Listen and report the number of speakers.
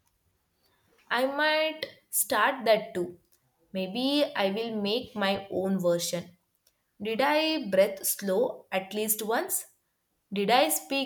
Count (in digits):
1